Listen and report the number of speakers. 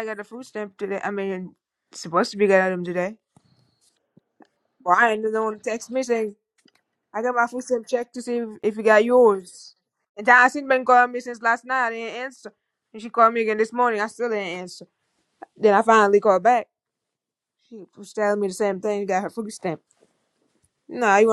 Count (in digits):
1